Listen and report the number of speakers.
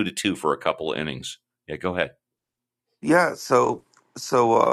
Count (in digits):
2